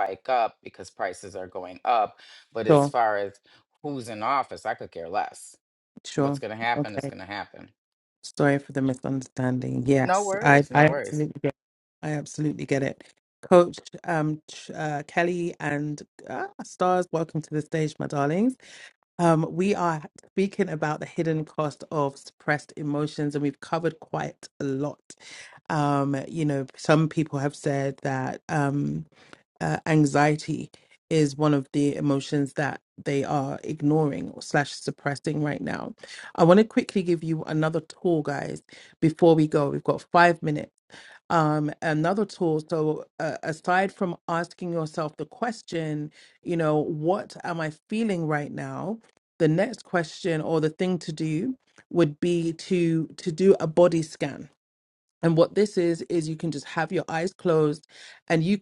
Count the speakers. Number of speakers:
2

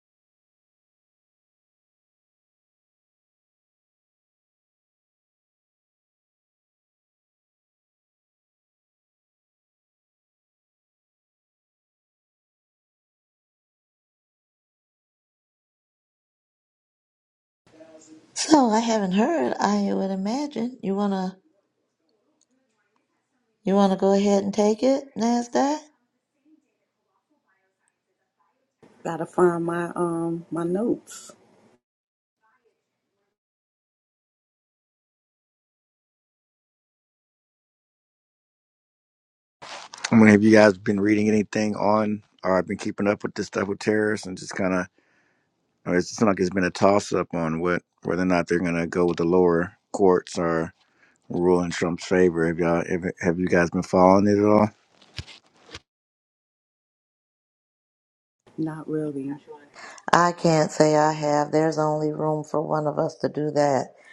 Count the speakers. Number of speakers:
3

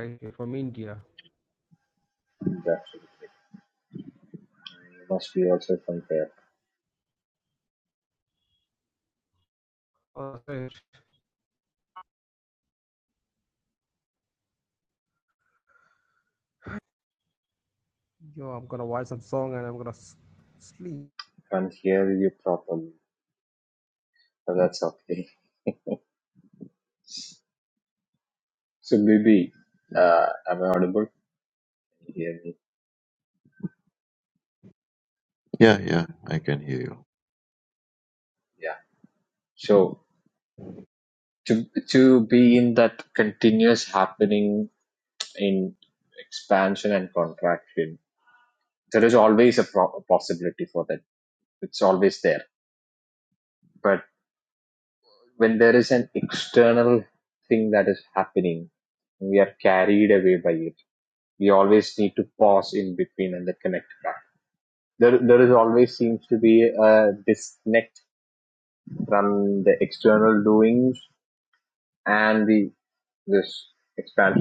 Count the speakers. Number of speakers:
3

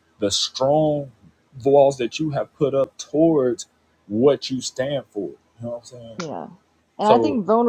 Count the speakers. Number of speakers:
2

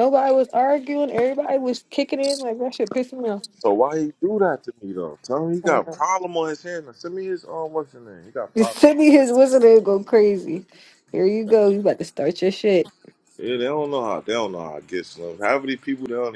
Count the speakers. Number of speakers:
2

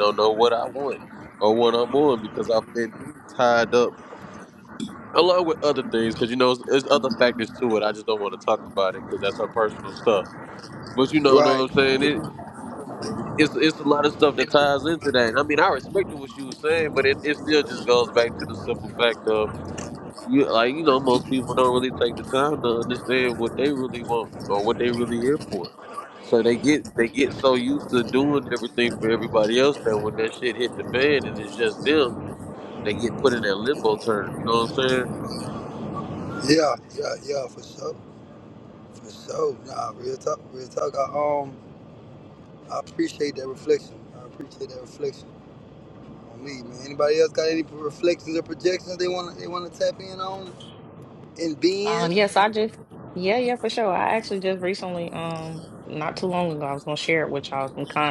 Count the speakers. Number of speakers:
3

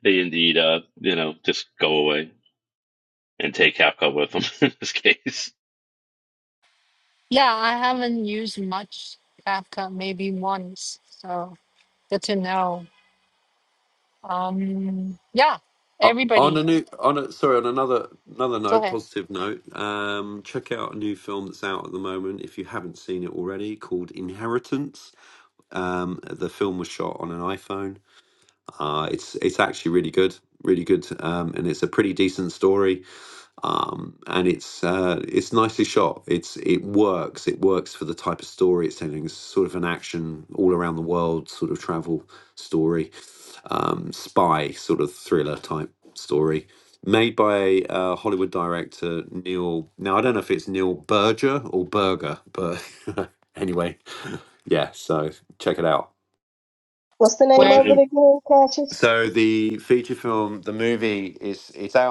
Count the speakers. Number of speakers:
4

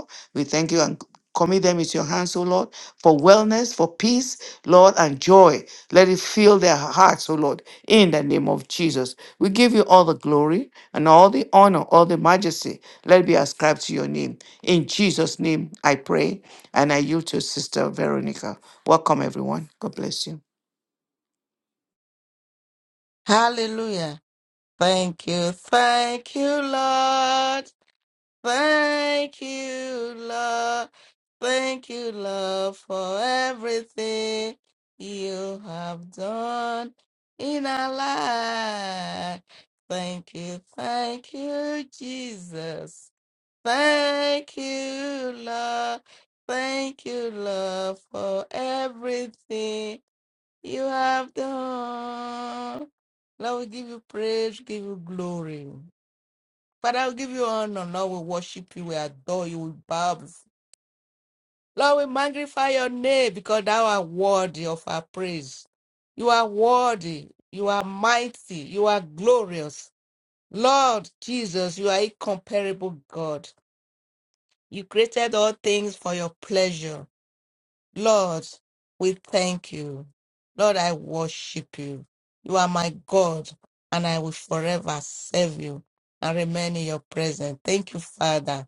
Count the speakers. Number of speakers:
2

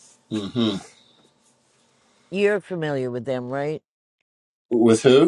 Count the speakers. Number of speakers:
2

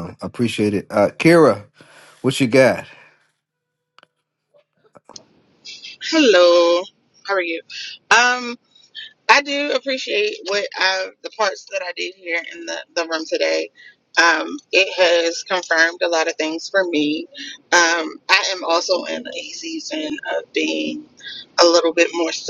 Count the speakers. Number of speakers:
2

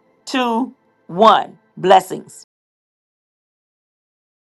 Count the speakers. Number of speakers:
1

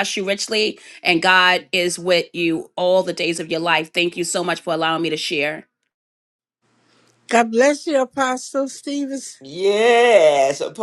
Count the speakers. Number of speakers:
3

